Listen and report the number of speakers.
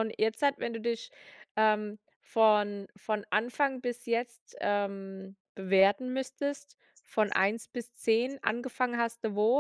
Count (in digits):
1